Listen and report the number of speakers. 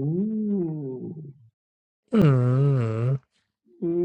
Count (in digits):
2